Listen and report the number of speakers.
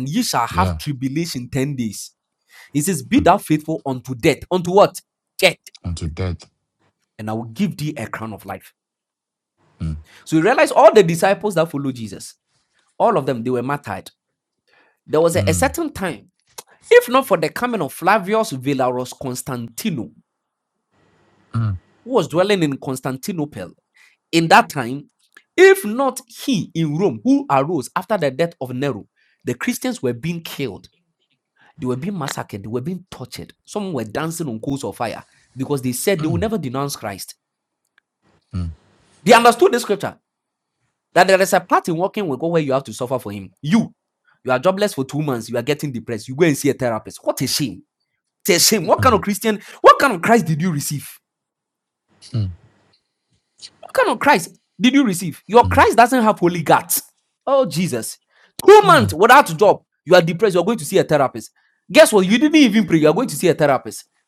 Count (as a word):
two